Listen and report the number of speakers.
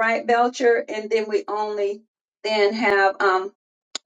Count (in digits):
1